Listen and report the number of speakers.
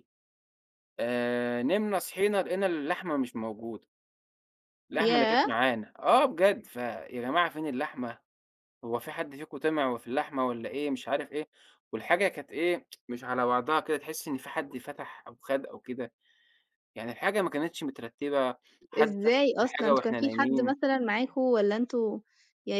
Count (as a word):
two